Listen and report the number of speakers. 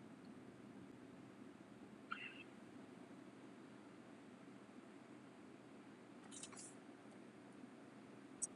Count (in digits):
0